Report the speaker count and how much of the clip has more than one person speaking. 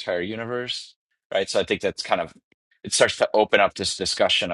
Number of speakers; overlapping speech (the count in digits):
1, no overlap